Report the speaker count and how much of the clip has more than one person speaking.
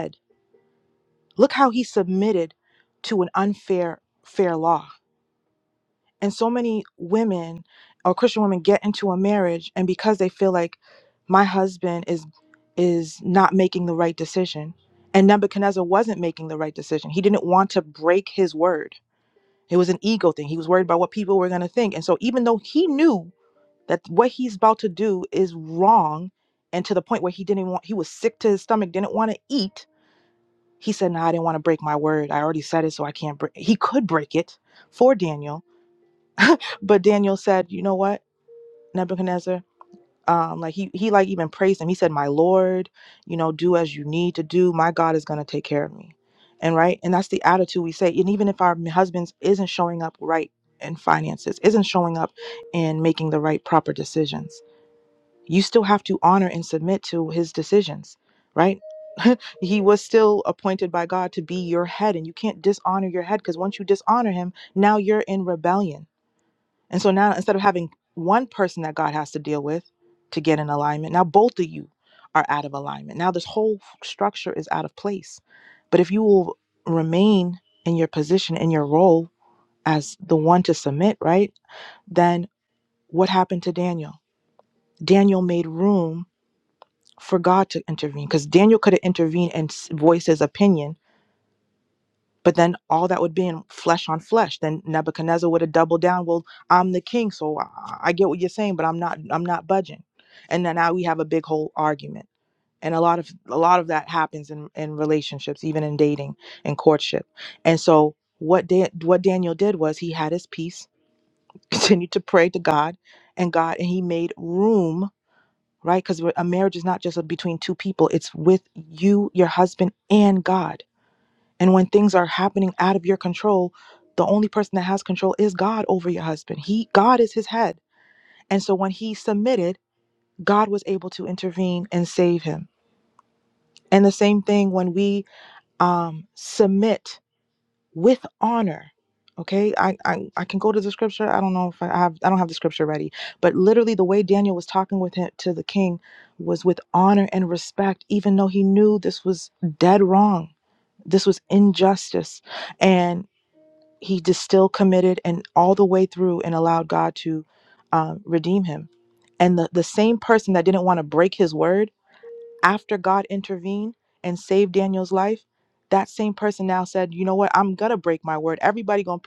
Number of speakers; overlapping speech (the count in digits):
1, no overlap